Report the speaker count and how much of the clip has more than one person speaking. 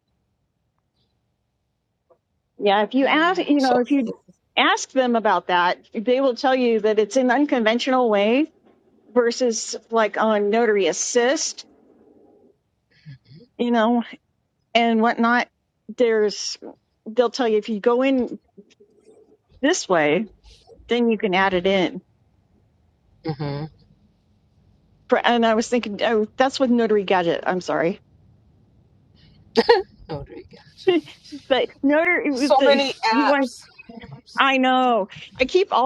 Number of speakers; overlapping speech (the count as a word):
two, about 4%